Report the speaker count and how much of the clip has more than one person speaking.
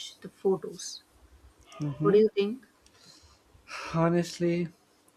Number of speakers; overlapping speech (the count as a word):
two, about 4%